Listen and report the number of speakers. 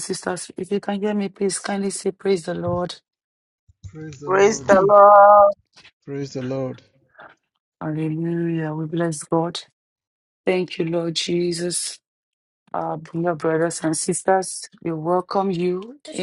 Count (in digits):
3